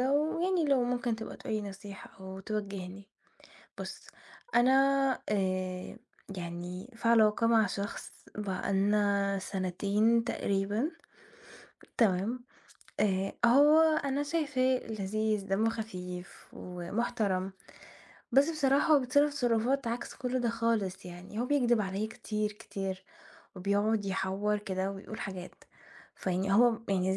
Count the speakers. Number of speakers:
1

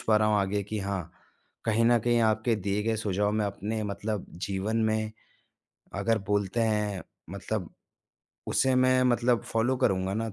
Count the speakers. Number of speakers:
1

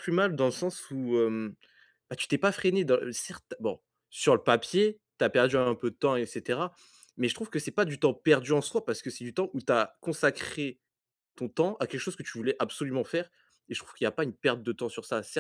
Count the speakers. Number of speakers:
1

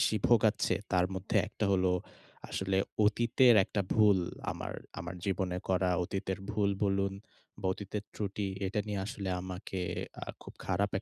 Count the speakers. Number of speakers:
1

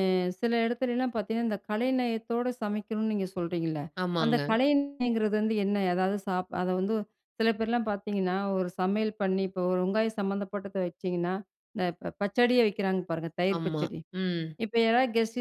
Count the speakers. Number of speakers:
2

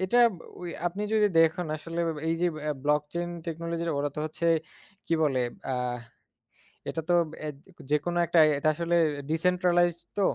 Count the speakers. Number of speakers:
1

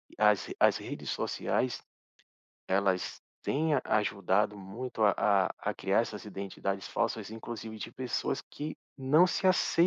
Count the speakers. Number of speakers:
1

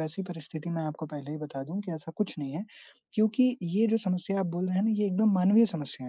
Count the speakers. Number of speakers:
1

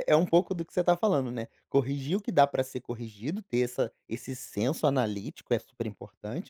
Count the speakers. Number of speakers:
1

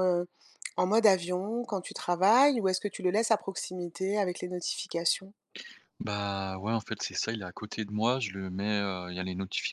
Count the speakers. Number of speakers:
2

